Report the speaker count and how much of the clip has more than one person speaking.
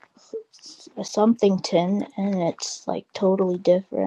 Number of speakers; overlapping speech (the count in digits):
1, no overlap